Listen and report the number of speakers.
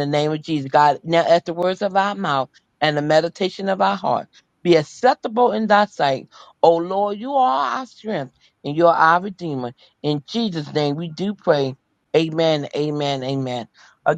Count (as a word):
one